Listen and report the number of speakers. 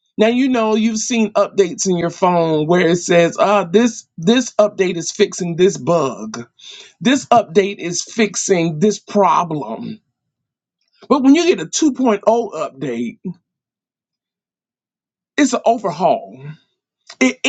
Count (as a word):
one